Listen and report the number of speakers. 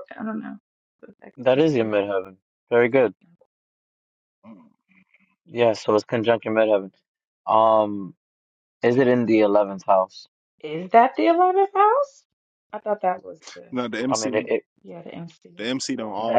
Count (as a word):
three